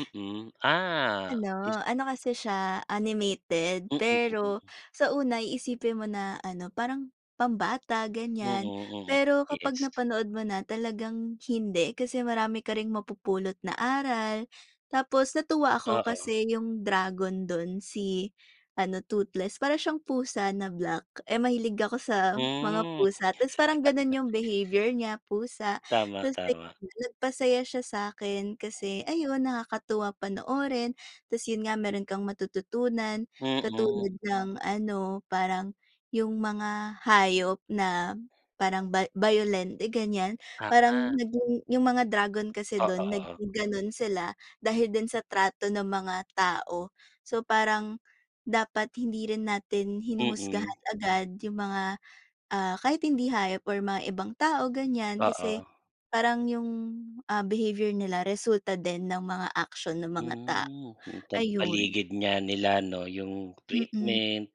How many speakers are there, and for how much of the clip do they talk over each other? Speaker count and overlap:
2, about 11%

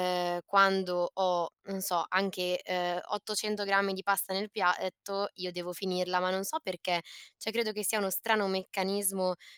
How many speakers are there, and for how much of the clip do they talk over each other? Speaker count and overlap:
1, no overlap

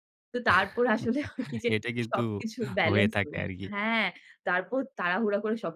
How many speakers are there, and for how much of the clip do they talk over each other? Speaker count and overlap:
2, about 11%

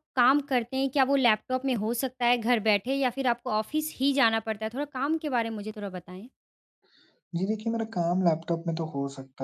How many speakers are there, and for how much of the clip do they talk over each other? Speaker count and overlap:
2, no overlap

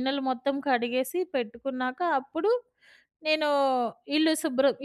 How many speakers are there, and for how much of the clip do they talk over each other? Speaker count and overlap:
1, no overlap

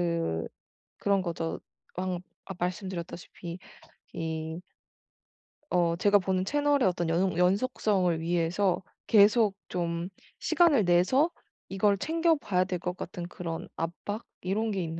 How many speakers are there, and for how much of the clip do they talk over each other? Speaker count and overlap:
1, no overlap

